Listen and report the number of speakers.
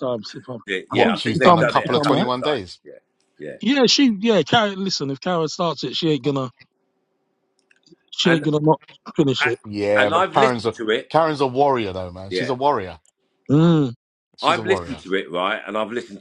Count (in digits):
3